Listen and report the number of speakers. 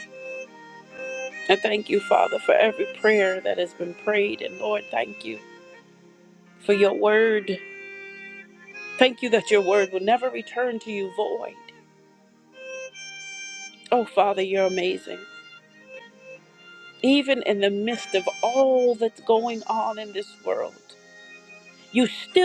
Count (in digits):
1